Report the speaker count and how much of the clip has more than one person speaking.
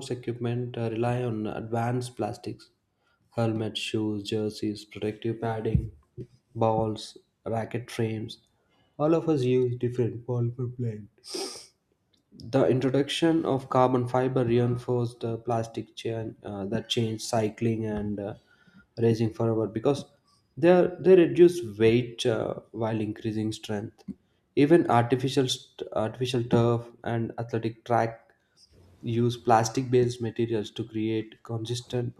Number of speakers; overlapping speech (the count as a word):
one, no overlap